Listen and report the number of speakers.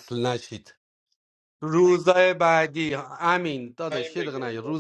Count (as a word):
one